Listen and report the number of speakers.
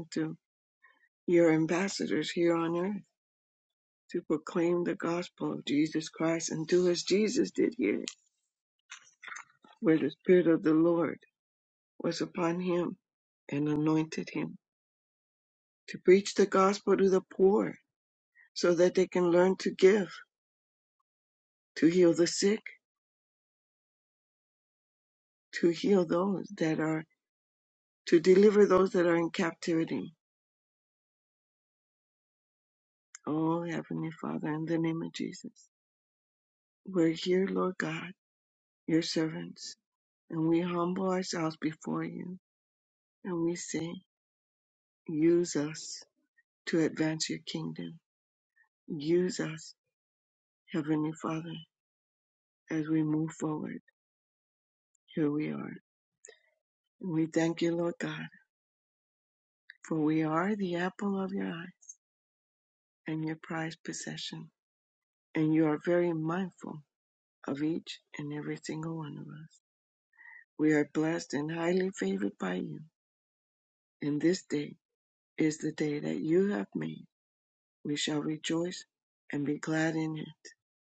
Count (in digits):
1